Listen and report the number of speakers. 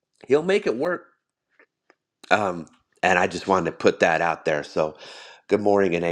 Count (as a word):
one